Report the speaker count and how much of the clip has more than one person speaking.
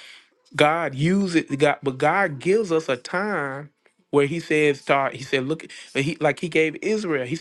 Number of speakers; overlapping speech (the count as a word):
one, no overlap